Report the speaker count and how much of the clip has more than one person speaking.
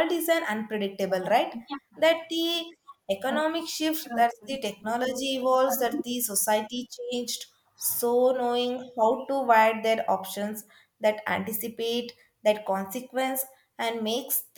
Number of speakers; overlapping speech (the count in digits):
1, no overlap